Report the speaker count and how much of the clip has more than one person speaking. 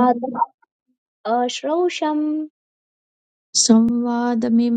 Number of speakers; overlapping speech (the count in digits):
2, about 5%